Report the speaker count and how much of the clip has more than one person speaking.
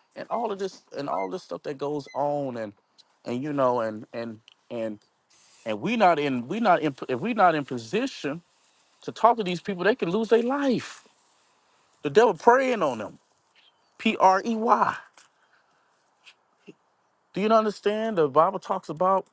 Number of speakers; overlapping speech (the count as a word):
one, no overlap